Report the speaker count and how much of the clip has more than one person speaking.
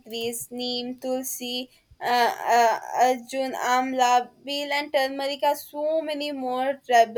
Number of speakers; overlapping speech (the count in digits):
1, no overlap